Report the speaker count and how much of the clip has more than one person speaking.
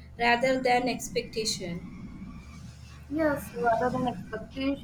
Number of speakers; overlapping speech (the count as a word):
two, no overlap